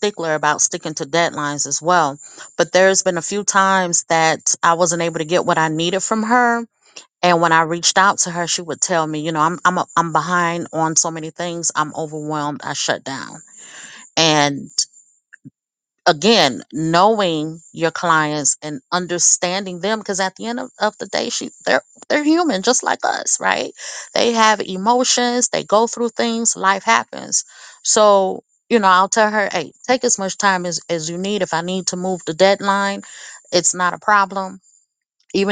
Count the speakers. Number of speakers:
1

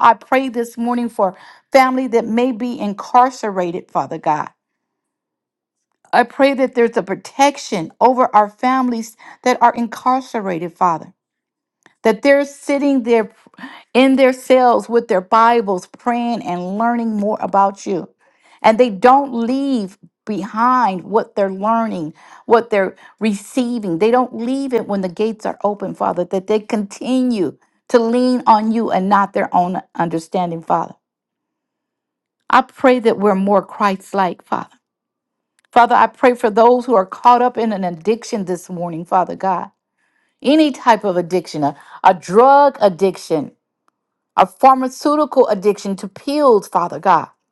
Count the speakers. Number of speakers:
1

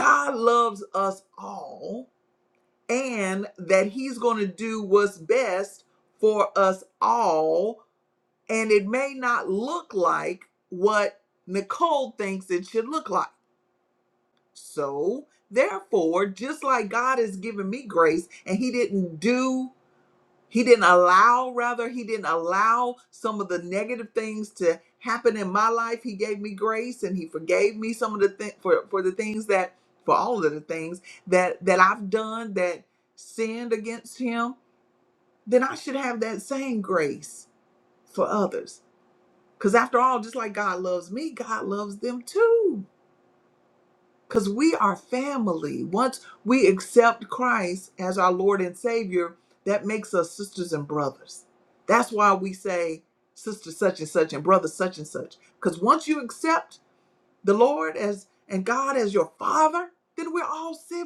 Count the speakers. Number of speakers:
1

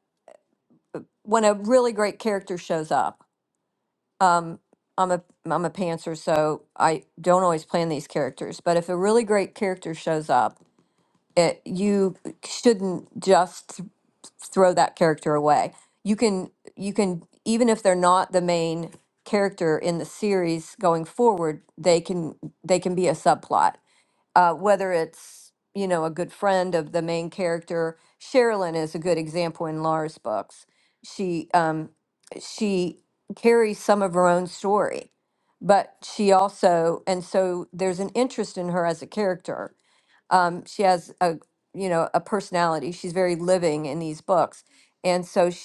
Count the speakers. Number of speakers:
1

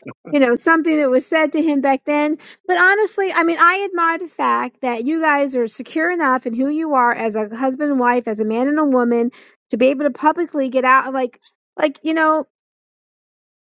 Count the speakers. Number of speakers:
1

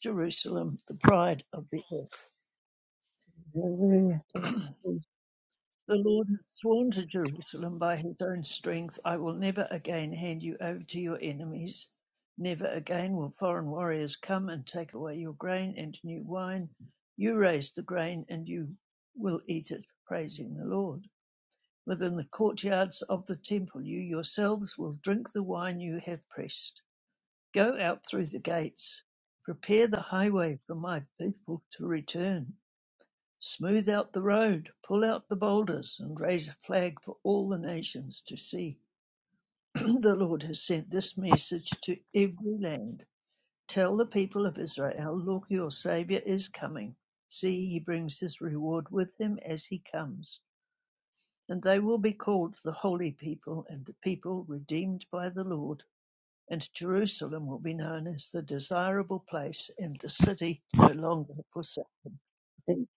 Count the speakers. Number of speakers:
2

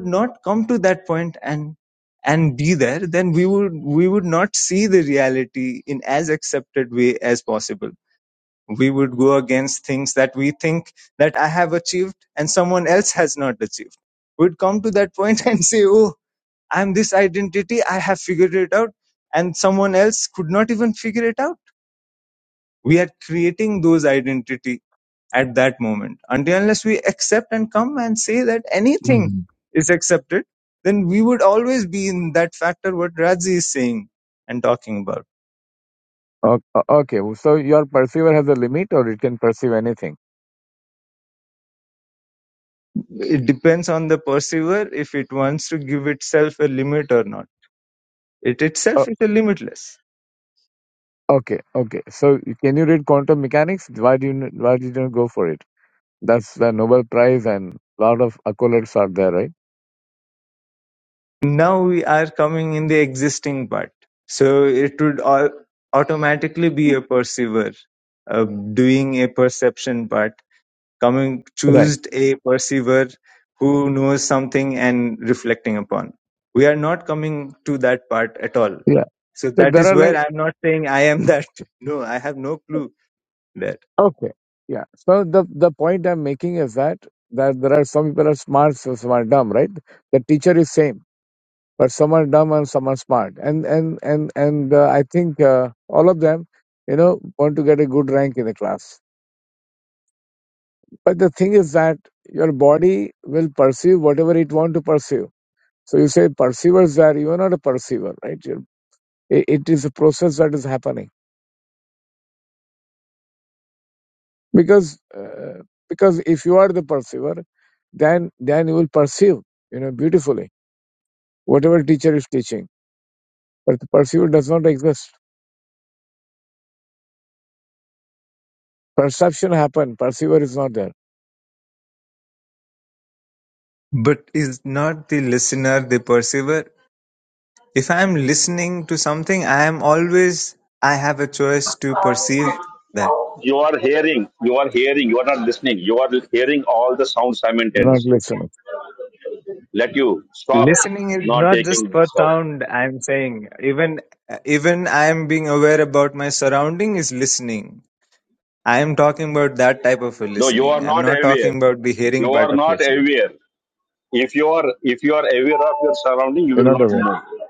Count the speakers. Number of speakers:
3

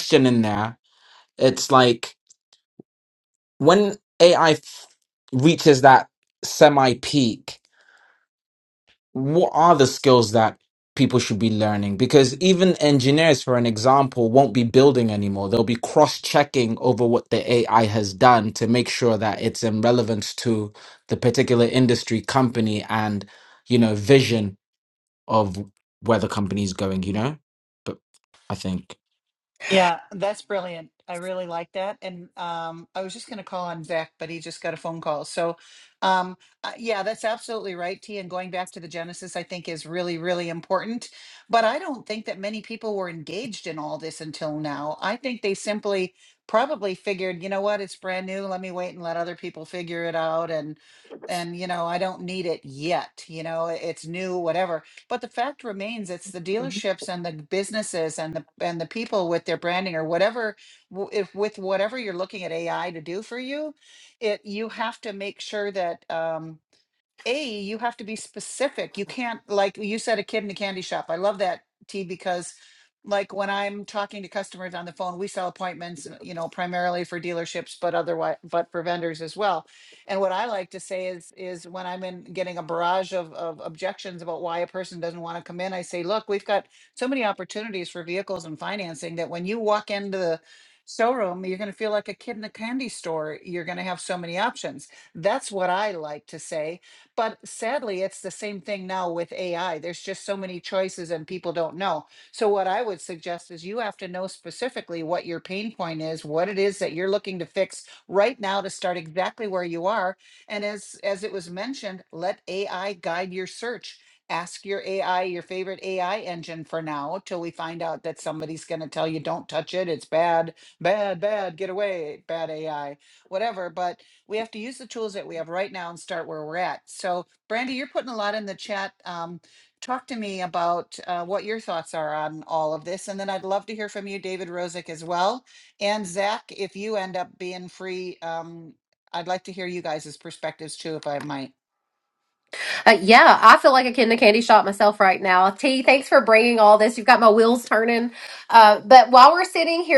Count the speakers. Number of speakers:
3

